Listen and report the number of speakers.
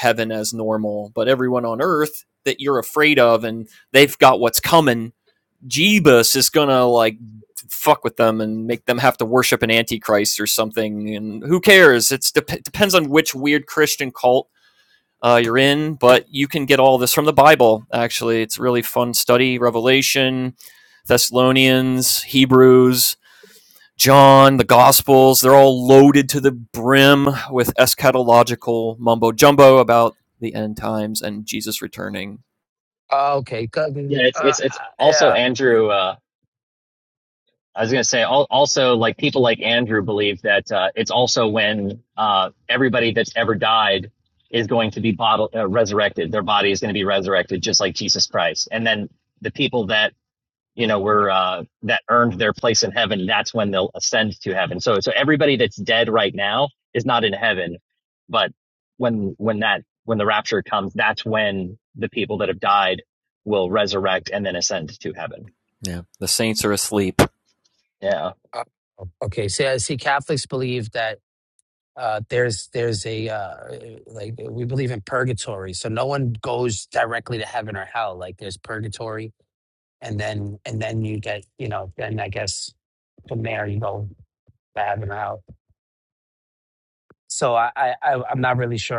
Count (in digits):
3